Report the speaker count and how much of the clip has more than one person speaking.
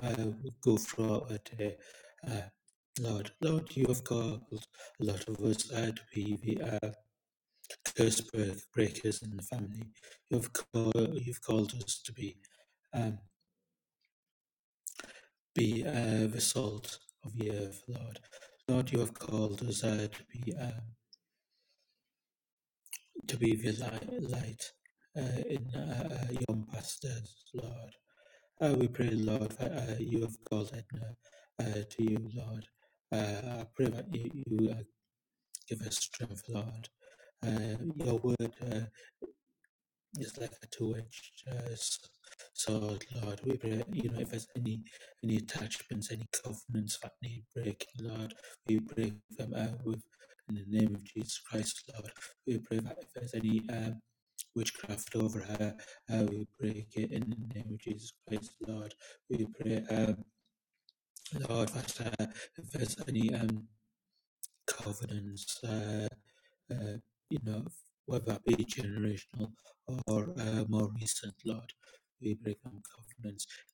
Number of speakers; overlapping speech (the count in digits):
1, no overlap